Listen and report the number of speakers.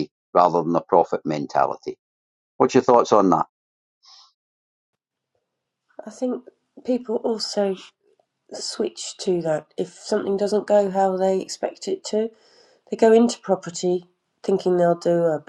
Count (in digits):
2